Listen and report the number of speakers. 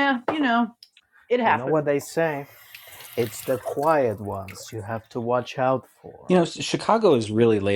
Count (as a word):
three